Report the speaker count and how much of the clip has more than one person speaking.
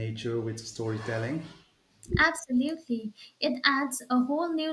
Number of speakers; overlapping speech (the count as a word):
two, no overlap